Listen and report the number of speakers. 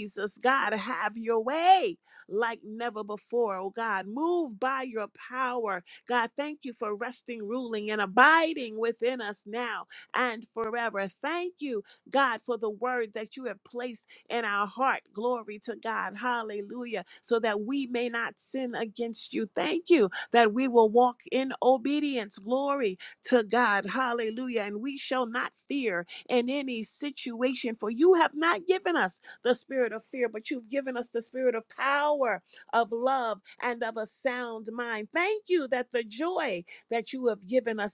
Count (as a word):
one